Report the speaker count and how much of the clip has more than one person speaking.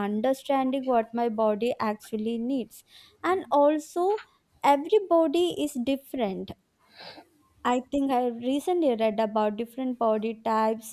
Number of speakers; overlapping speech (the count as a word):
one, no overlap